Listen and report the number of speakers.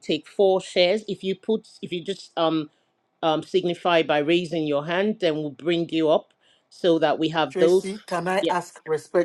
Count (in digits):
2